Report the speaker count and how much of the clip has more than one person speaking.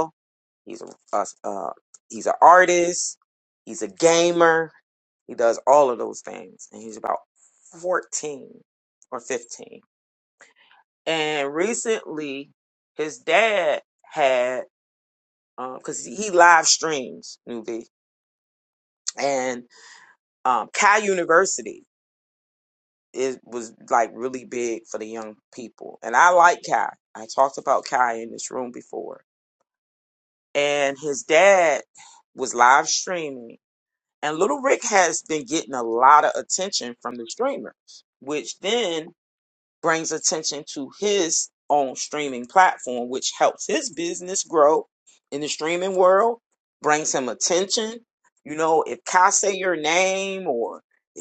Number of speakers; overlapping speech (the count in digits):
1, no overlap